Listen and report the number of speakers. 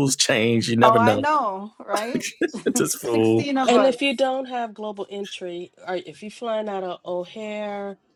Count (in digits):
3